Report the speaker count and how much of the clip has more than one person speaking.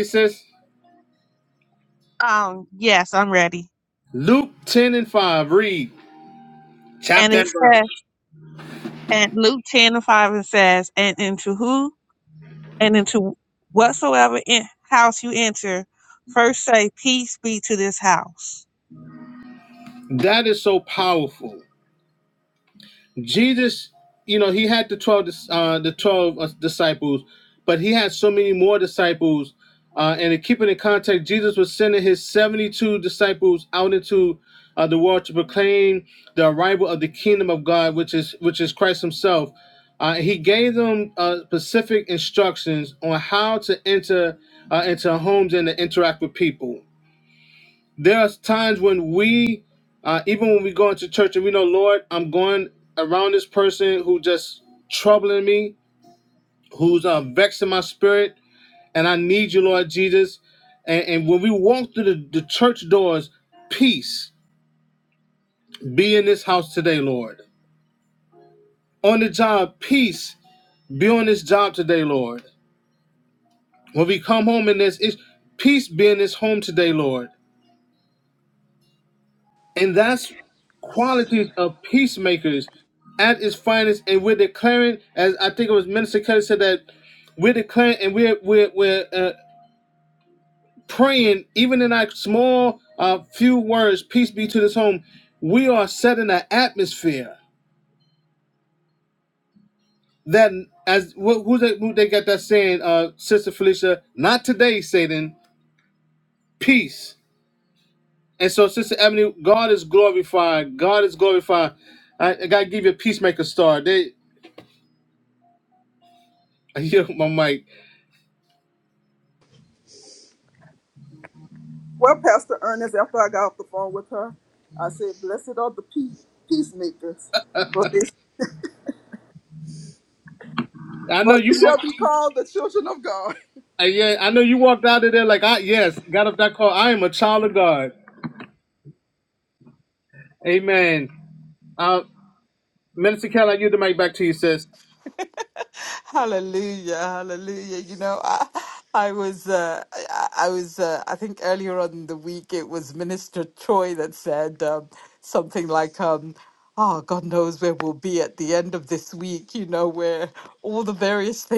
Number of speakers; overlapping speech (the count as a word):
four, about 1%